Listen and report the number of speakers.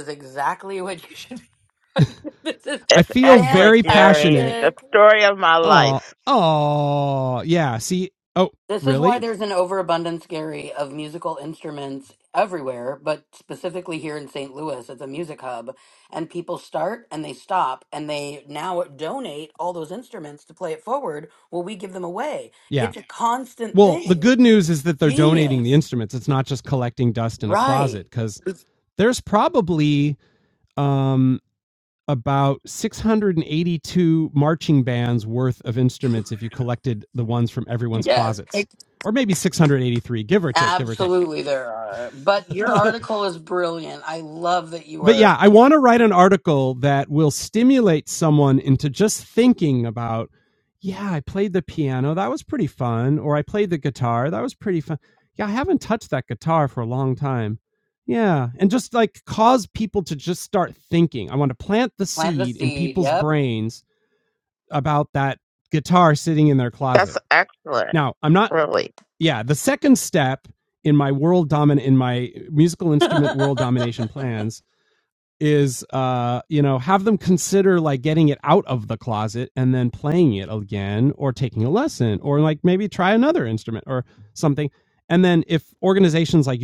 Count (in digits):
3